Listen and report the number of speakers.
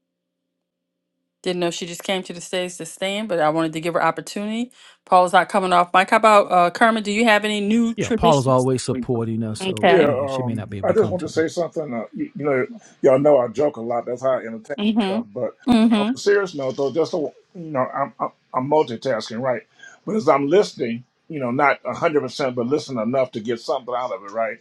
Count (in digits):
3